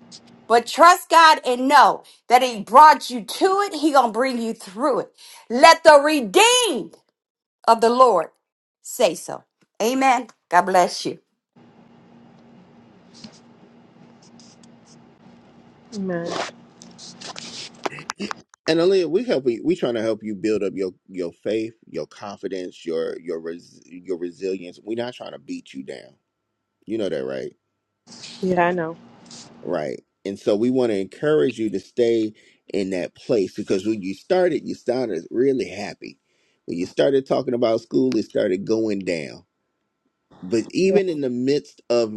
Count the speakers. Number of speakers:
three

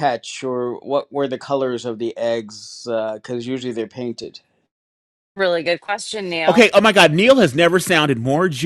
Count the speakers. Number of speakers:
three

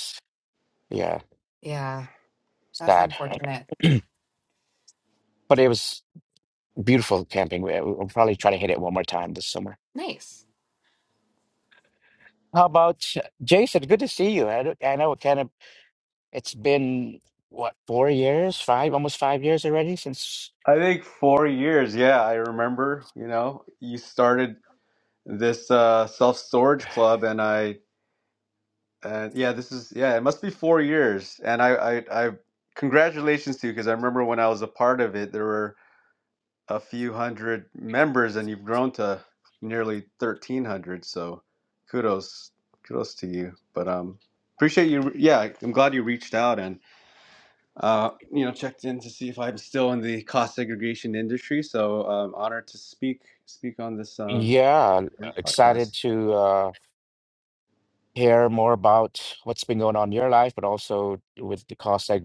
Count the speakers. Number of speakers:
three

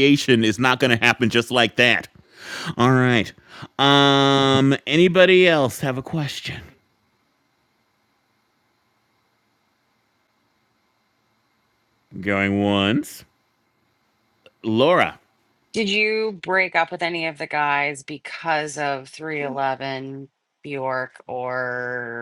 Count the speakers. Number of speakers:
two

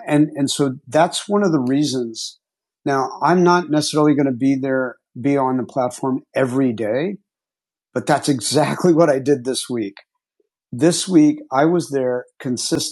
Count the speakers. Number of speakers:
one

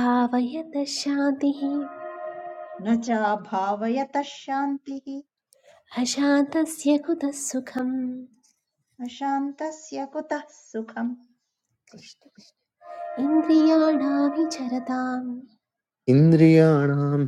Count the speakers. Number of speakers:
three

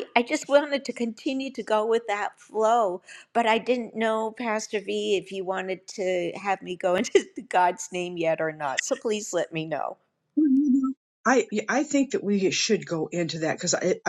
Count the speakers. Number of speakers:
two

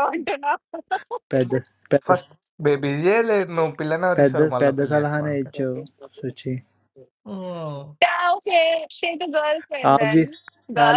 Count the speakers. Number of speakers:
three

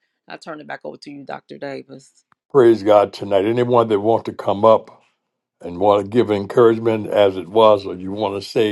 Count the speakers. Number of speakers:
two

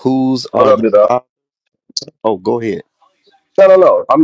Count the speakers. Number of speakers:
two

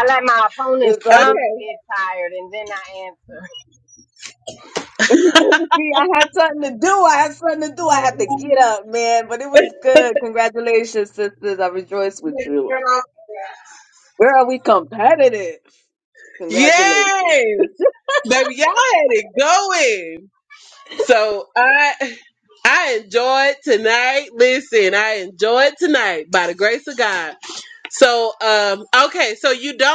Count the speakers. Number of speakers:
three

